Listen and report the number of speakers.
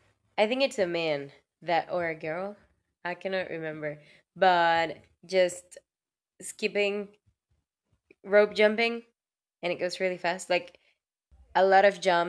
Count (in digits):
1